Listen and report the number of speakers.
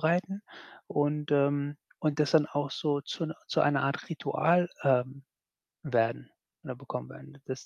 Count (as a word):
one